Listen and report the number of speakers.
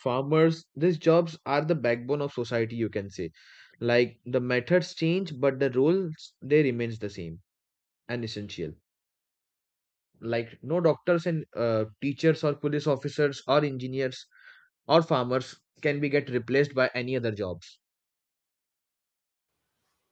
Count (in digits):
1